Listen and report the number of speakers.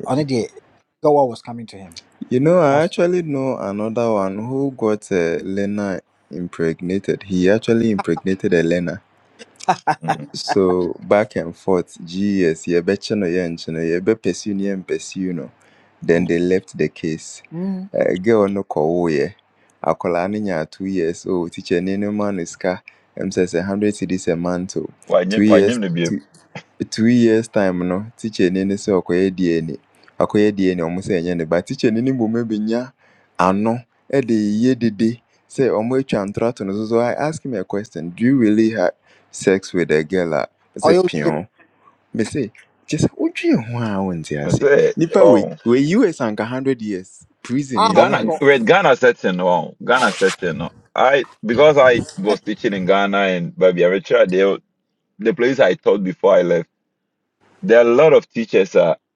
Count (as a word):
three